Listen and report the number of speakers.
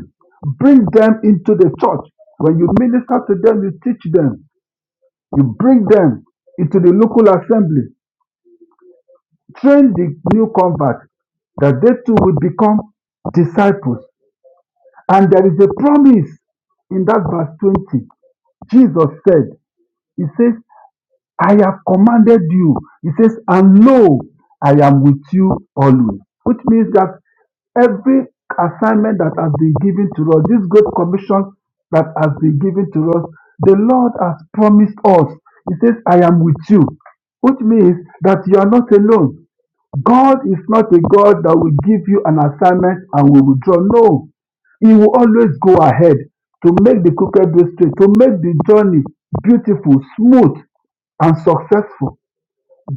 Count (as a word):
one